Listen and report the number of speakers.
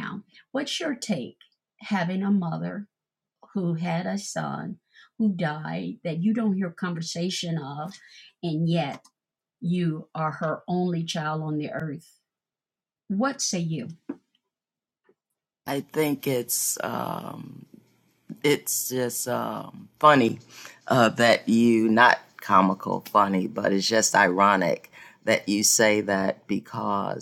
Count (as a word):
two